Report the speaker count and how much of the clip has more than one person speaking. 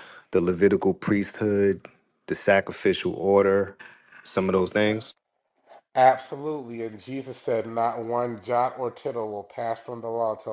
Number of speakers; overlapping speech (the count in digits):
2, no overlap